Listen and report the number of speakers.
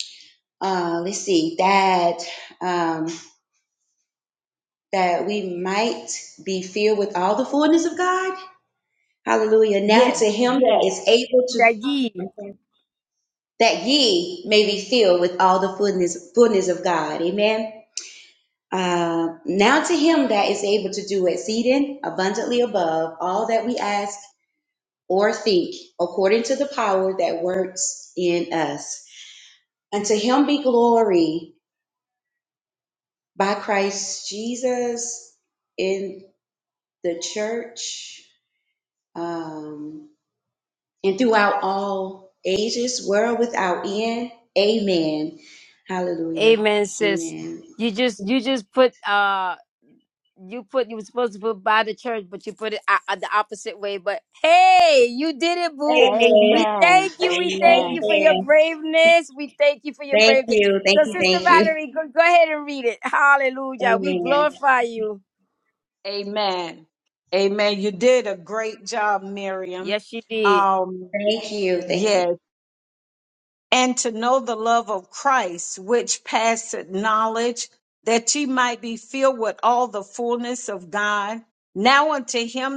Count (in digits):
3